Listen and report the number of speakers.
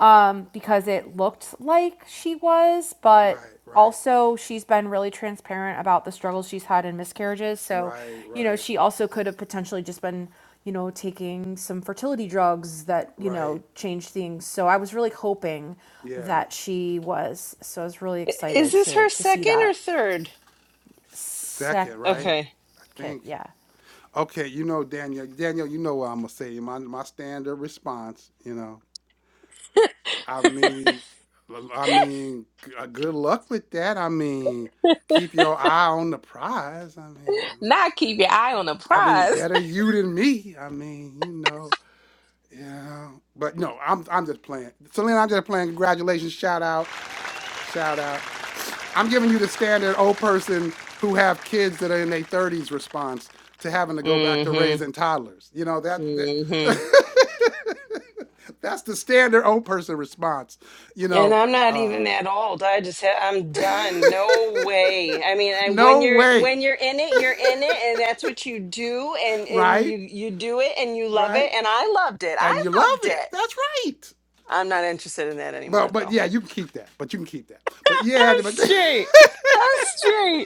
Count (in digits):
4